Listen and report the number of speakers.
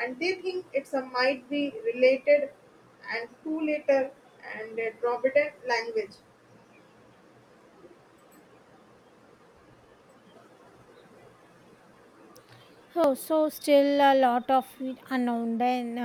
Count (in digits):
2